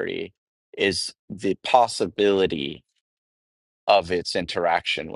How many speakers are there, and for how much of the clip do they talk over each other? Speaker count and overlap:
1, no overlap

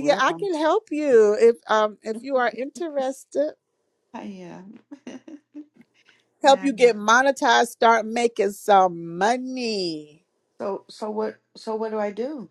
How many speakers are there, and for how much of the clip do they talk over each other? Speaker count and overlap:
2, about 7%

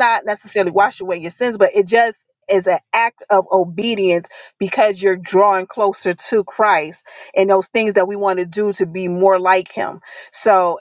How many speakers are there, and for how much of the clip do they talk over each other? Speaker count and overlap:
1, no overlap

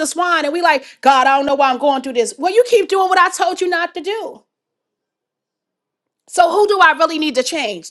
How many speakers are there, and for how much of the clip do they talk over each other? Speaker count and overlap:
1, no overlap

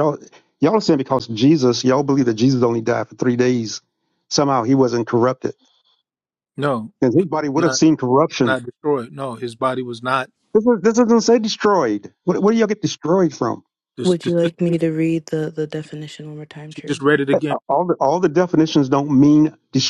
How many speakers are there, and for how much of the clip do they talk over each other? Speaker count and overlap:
3, about 6%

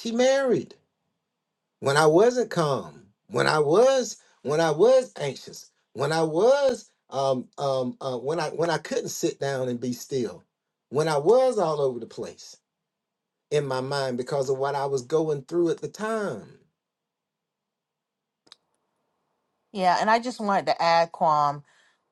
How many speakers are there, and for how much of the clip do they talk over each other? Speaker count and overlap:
2, no overlap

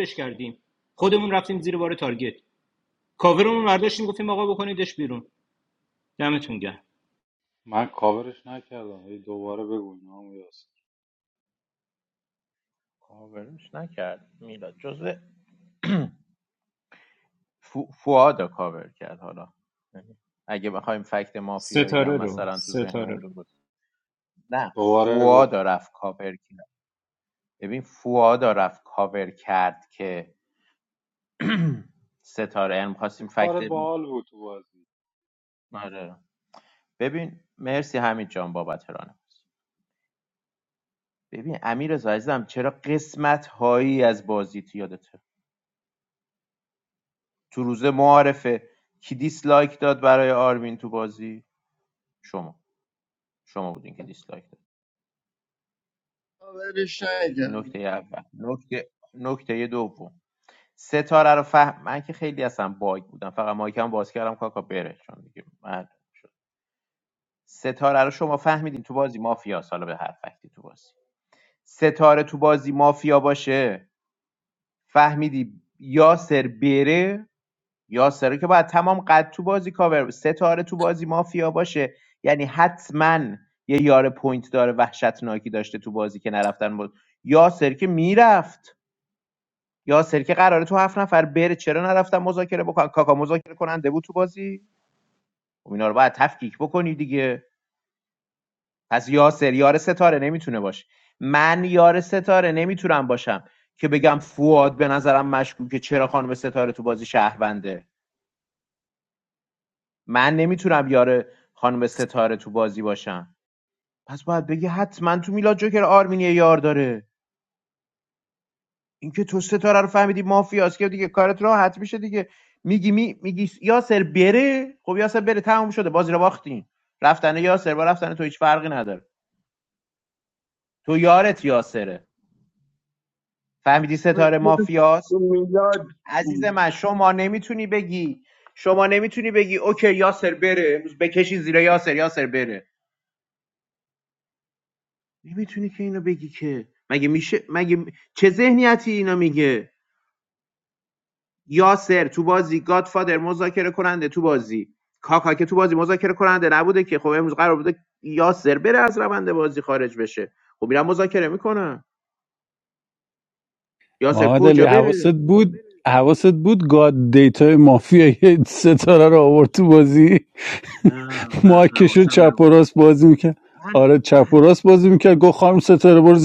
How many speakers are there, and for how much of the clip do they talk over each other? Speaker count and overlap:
5, about 3%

